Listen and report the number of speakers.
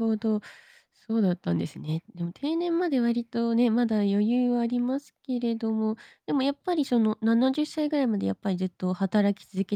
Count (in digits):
1